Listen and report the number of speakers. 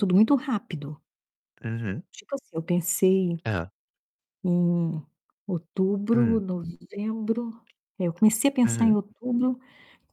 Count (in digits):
2